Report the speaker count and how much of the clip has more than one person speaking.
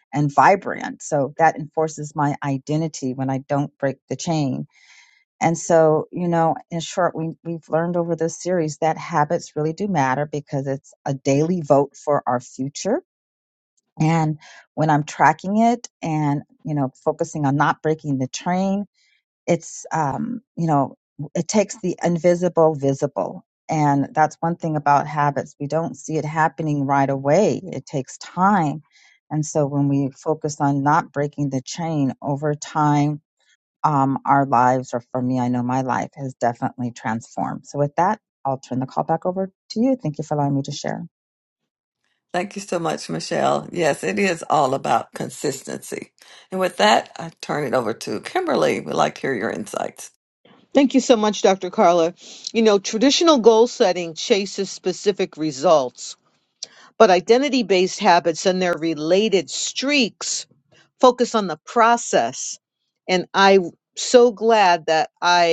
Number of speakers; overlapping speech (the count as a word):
three, no overlap